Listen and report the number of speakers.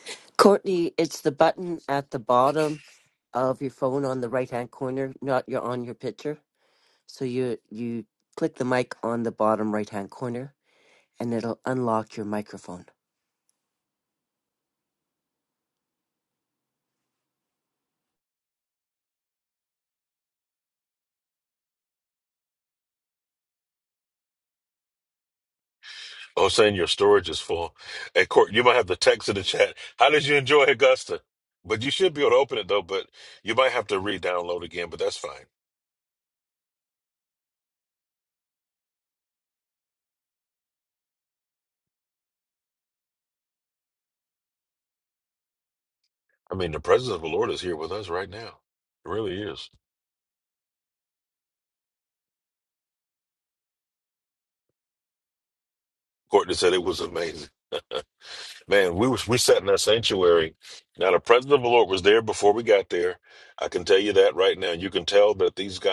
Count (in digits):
2